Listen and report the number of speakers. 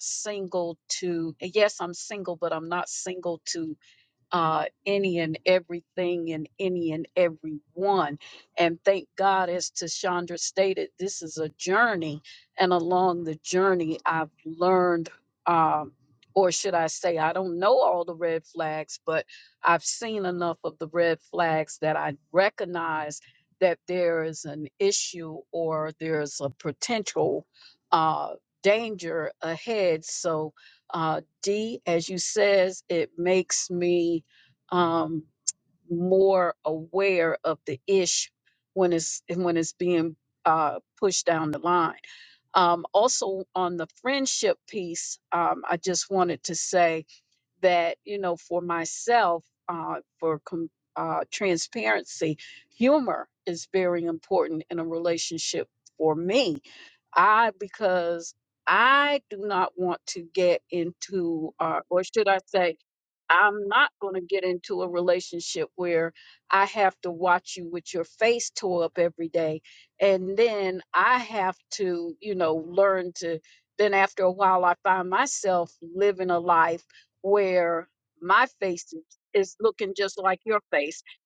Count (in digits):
1